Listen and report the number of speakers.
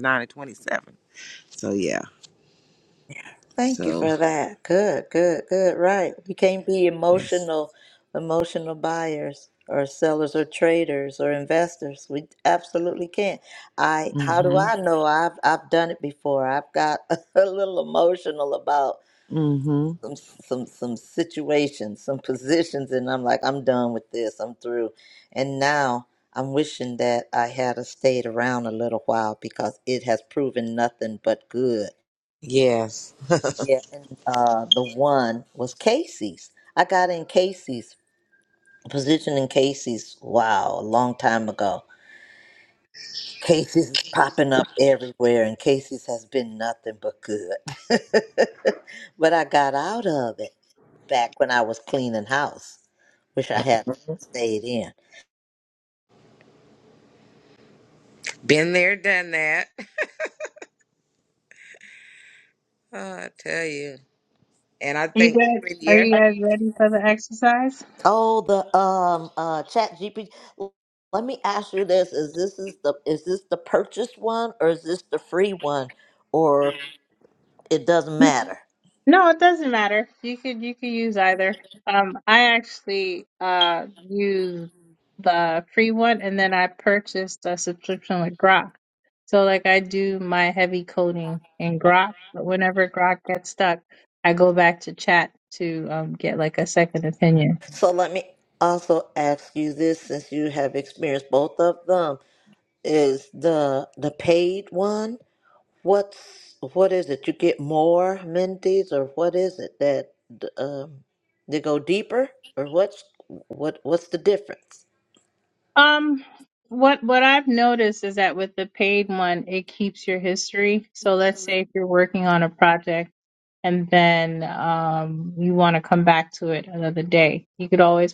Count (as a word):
three